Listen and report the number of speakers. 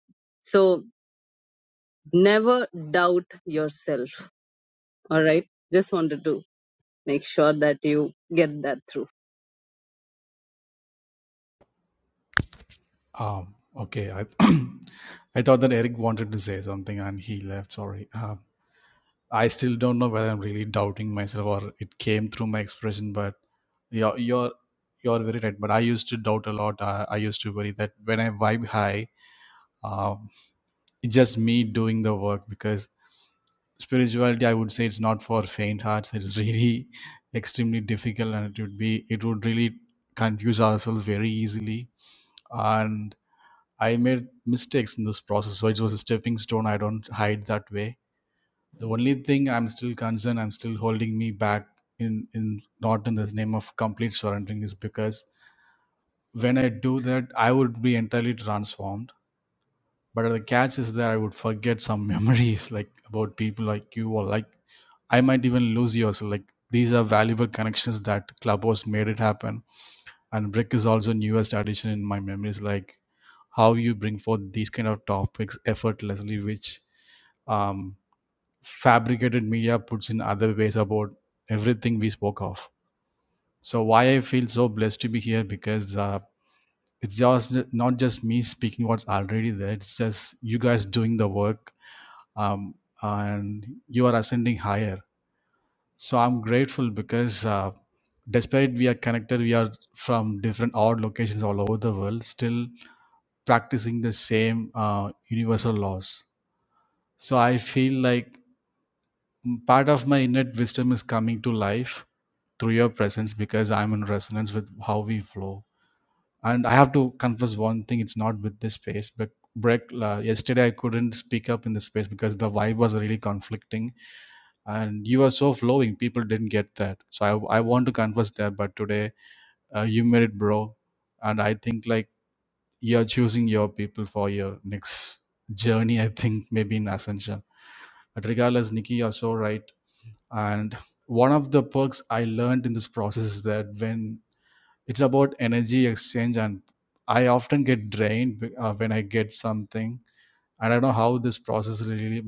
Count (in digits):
2